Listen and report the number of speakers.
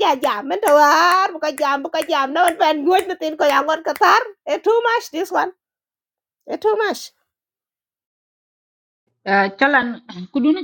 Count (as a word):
two